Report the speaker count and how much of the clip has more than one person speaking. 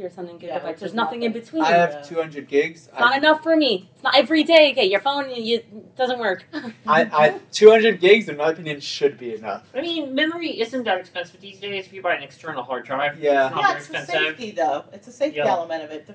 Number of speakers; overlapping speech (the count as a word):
four, about 27%